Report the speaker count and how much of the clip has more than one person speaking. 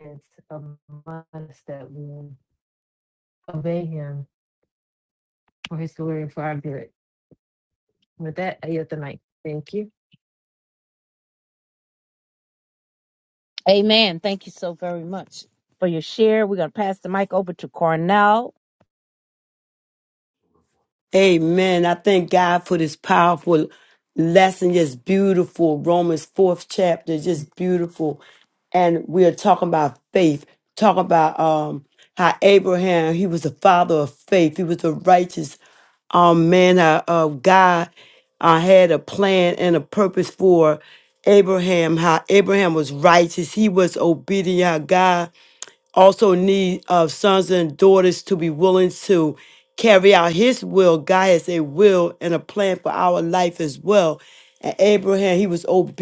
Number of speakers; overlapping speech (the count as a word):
three, no overlap